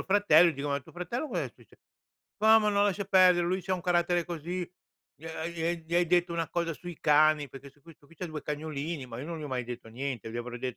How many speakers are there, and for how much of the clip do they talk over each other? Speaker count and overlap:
1, no overlap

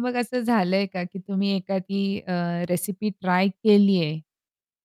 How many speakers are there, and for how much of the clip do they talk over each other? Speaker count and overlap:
1, no overlap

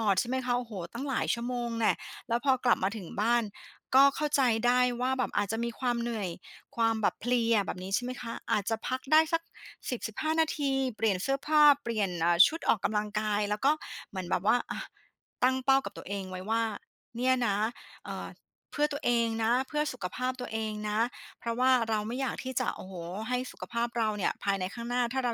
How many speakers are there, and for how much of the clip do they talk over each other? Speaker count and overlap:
1, no overlap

